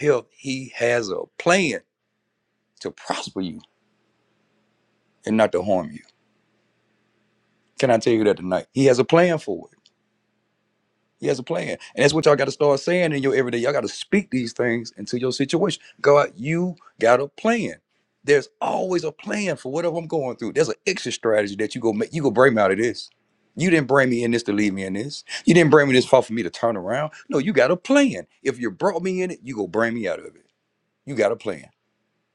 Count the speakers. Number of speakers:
one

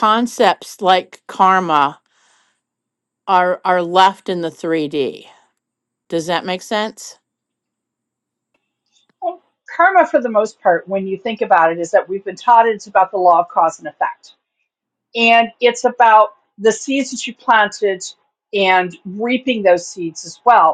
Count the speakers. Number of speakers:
two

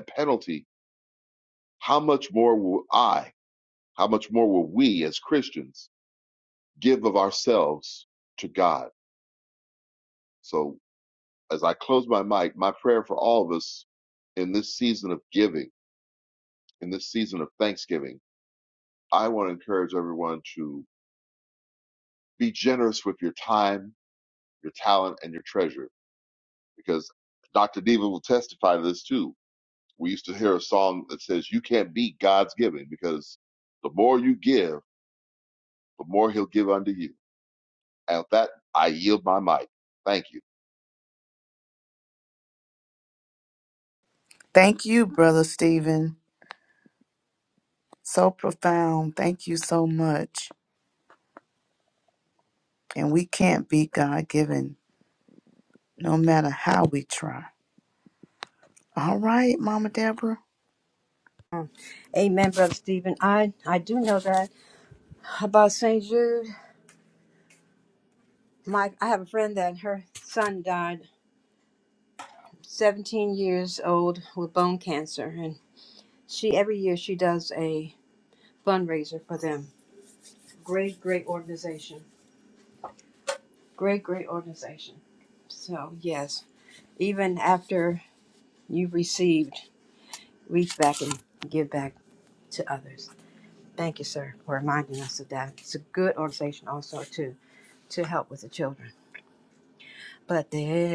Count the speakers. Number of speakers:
three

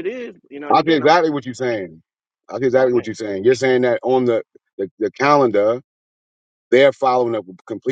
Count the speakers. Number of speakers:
two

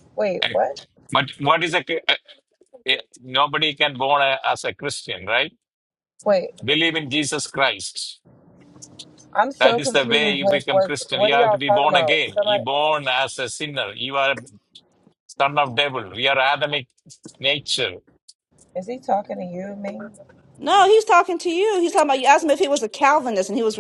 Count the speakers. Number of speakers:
three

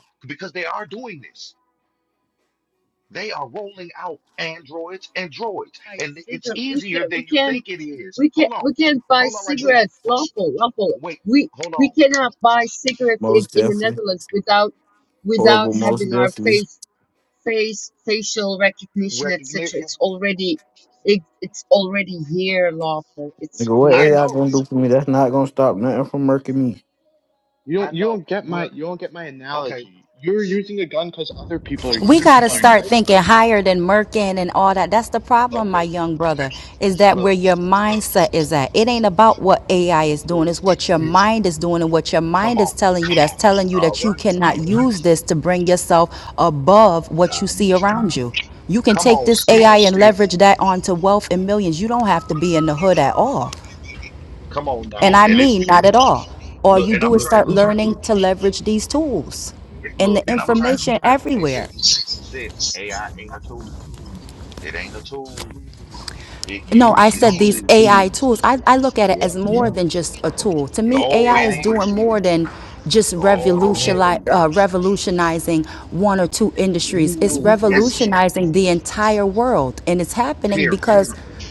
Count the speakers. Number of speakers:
five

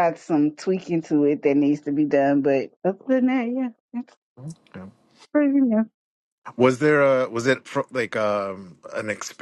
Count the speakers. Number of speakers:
two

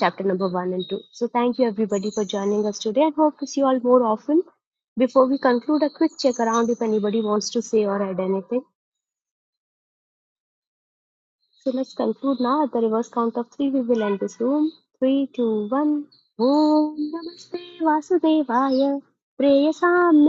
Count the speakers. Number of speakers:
one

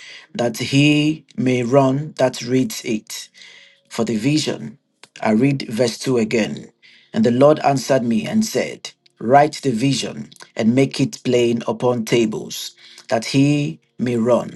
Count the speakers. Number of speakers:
one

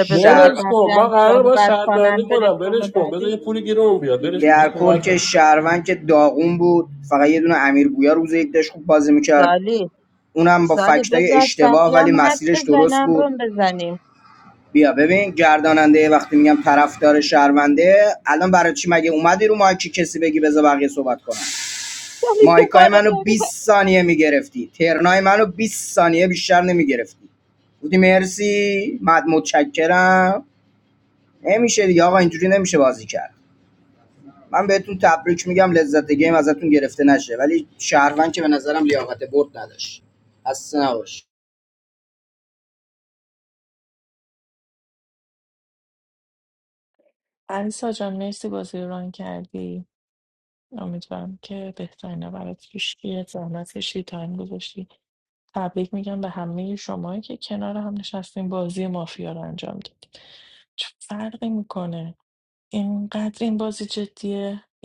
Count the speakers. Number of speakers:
four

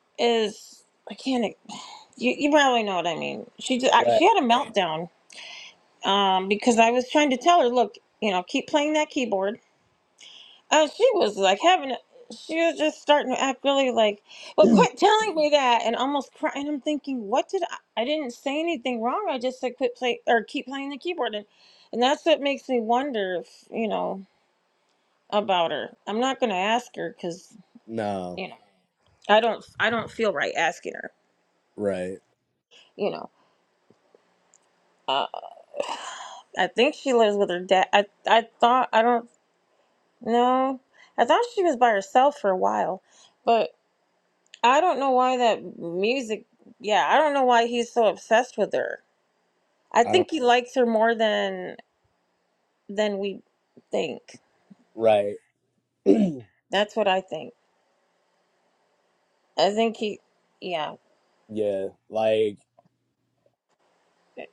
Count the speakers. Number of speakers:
two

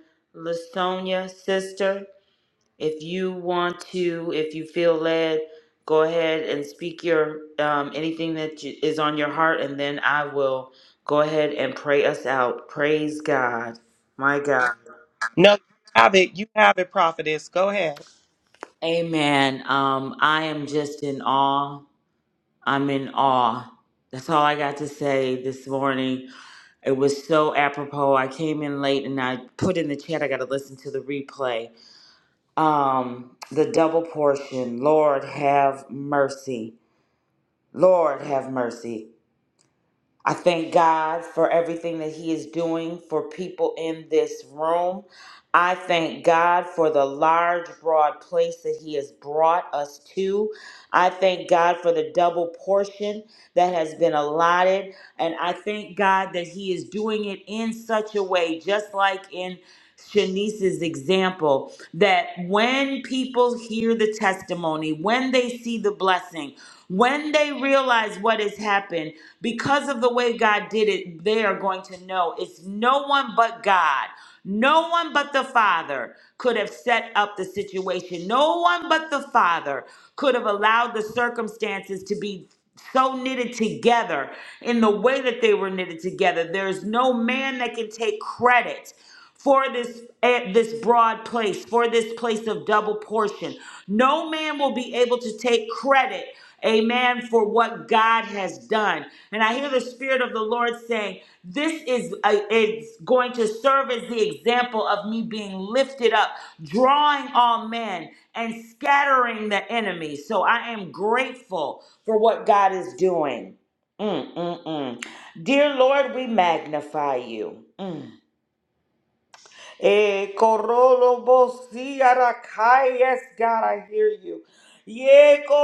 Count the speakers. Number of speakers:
two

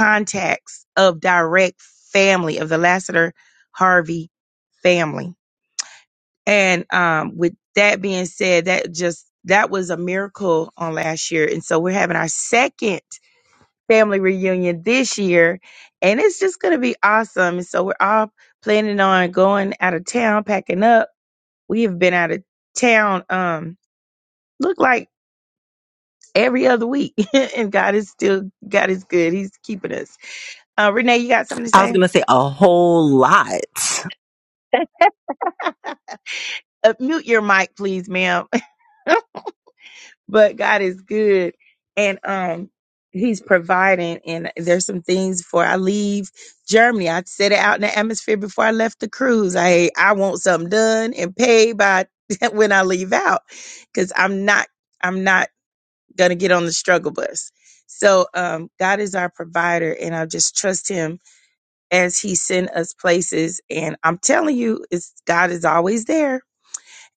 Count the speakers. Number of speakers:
two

